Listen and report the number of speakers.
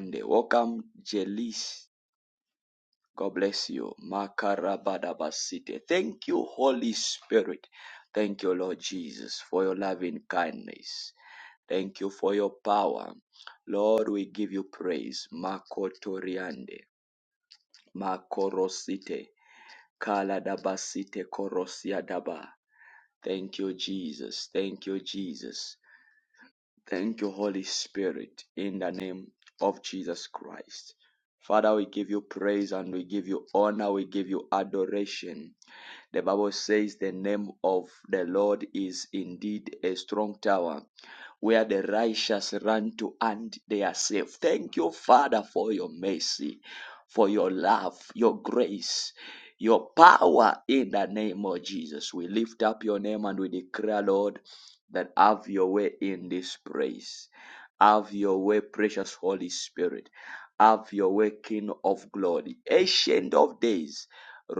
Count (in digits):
1